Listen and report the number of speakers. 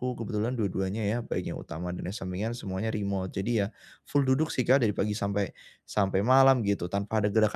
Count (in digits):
1